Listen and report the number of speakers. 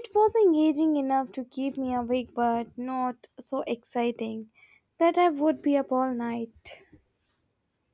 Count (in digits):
1